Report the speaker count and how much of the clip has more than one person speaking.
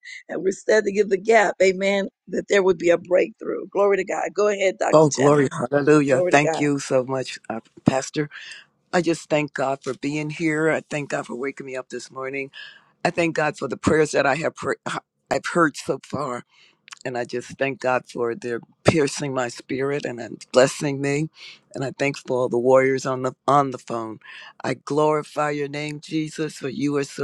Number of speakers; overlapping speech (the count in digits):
2, about 4%